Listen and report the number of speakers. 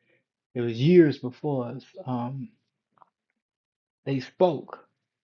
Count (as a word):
one